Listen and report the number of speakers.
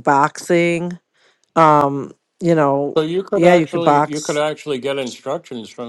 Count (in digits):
2